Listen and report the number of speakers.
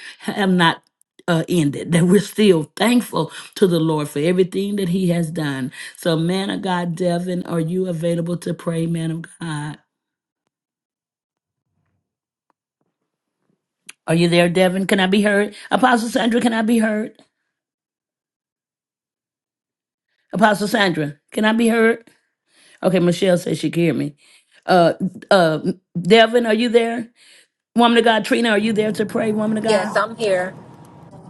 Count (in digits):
2